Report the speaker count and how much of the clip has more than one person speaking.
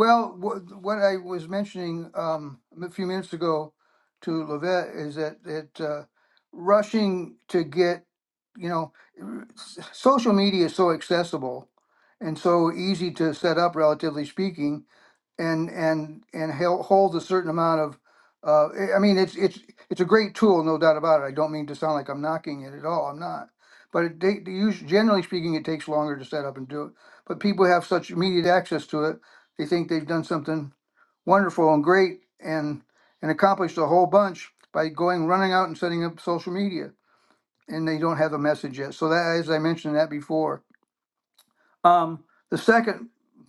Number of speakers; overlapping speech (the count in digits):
1, no overlap